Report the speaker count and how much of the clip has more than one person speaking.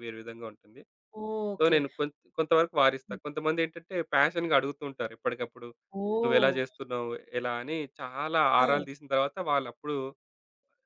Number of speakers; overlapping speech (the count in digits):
2, about 7%